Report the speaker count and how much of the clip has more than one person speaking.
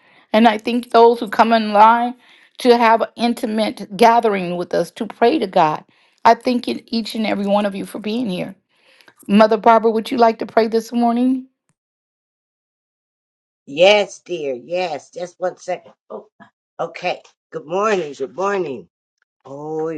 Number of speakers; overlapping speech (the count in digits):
2, no overlap